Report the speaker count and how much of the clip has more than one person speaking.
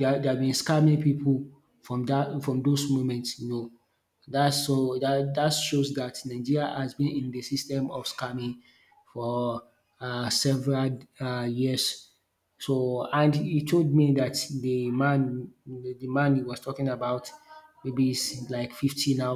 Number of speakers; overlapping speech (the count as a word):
one, no overlap